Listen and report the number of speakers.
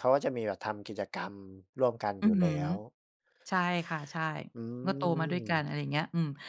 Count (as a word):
two